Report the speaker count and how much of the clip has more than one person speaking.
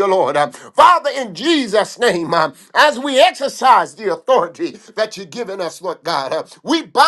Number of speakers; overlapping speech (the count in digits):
1, no overlap